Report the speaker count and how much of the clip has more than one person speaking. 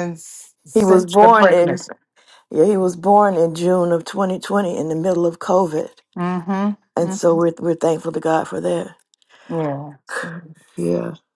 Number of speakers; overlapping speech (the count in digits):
2, about 11%